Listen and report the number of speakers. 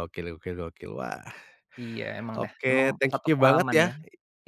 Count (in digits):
2